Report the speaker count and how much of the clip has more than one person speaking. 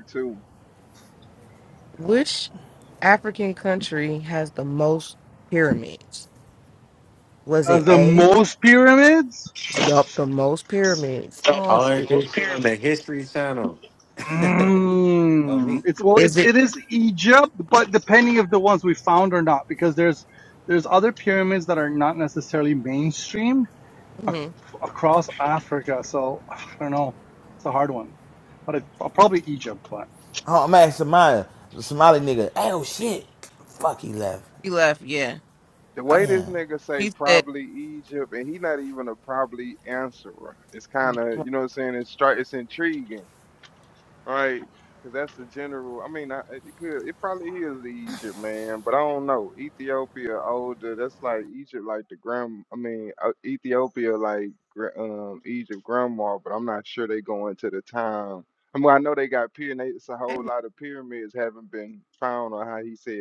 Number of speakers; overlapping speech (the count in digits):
5, about 4%